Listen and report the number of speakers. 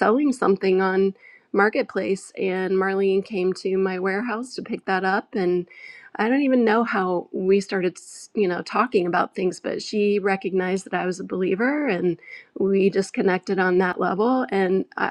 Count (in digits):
1